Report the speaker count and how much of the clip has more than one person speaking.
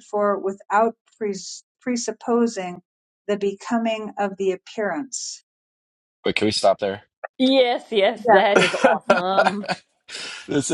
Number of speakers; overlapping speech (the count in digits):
3, about 3%